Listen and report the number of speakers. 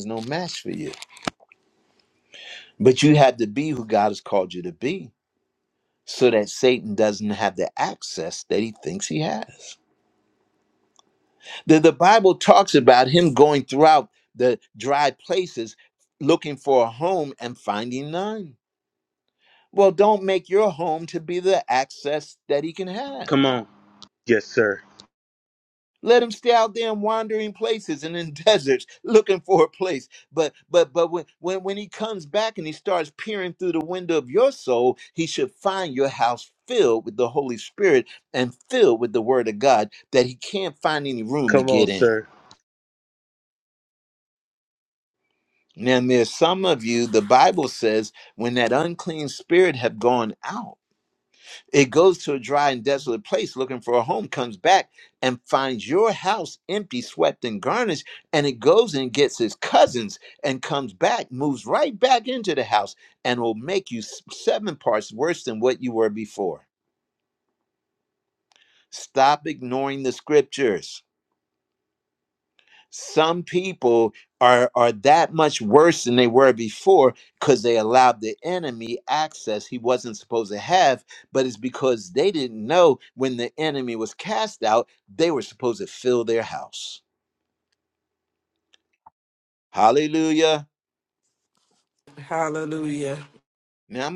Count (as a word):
three